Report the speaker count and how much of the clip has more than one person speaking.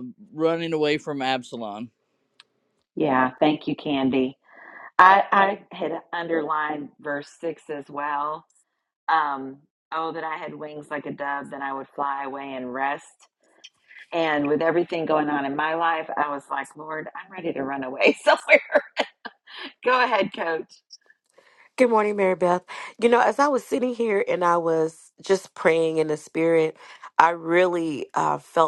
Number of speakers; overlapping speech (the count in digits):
3, no overlap